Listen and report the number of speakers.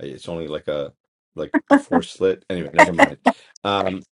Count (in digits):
1